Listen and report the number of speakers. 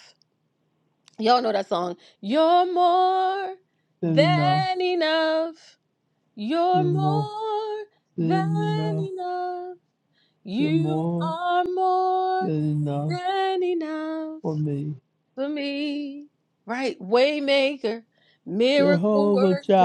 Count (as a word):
two